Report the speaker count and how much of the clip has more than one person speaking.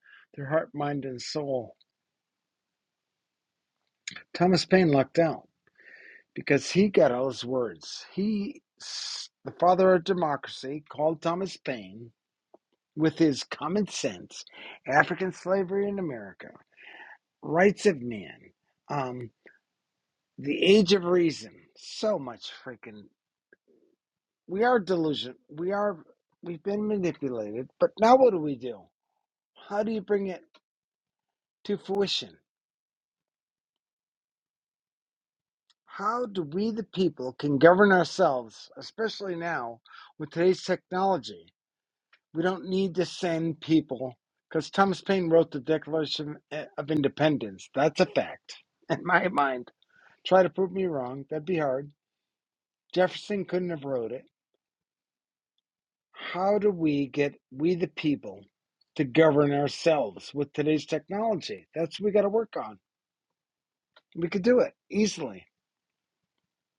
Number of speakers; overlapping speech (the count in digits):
1, no overlap